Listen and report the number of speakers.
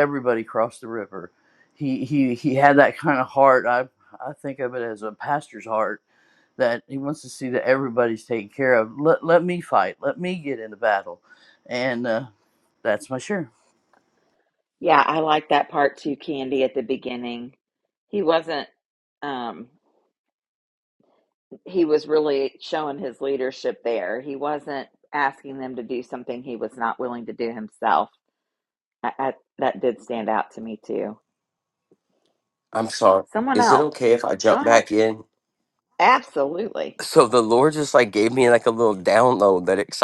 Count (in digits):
3